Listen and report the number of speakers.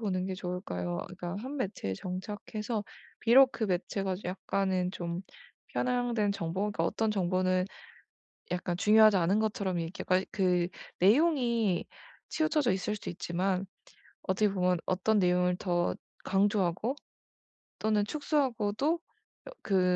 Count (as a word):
one